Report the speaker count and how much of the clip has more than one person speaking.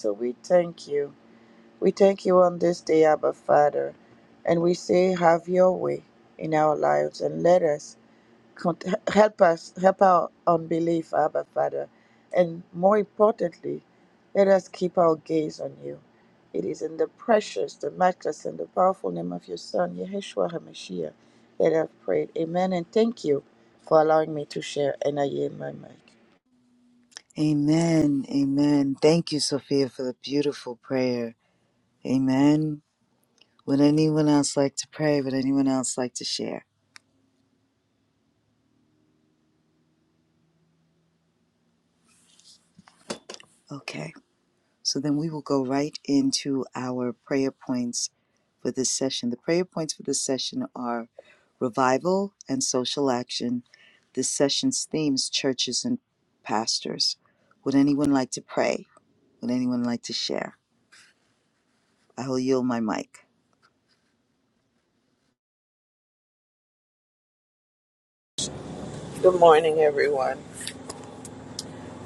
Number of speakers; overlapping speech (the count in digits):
3, no overlap